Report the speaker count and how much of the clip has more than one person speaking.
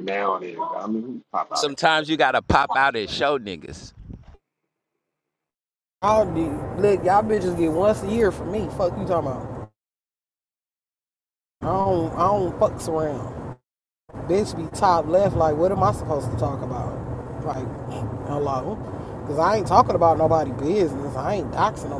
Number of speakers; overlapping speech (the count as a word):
three, about 1%